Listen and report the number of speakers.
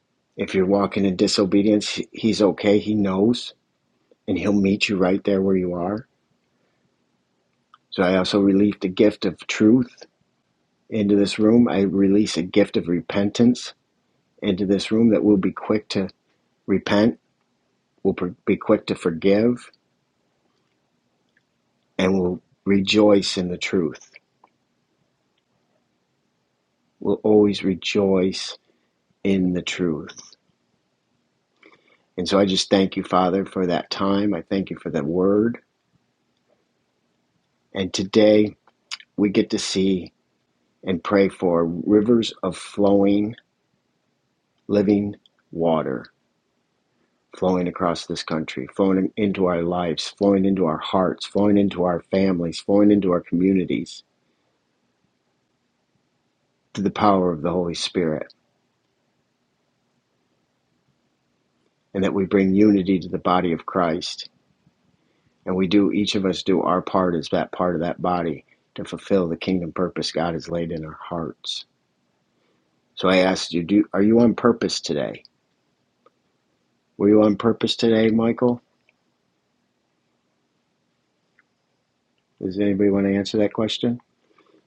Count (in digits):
1